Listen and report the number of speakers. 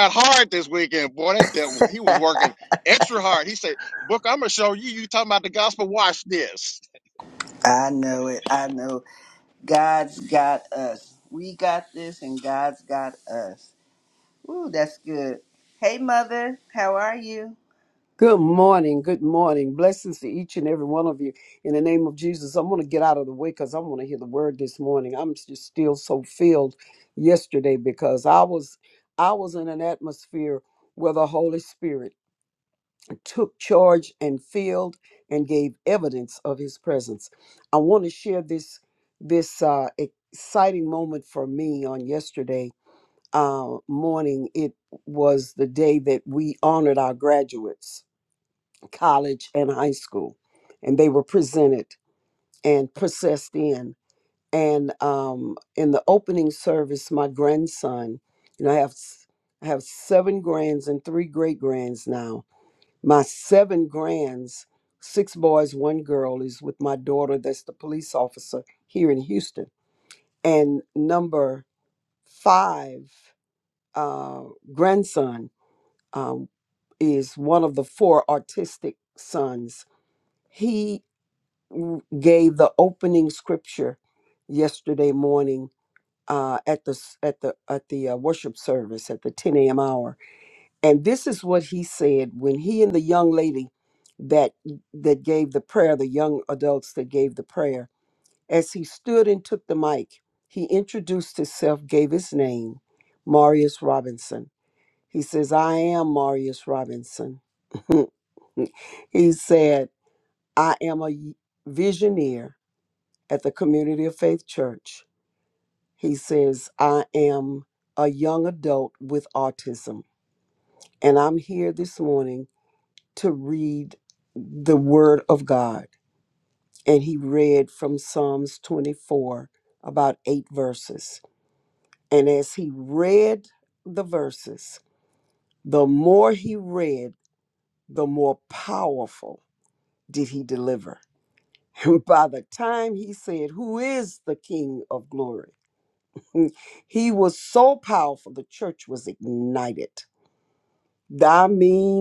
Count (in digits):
3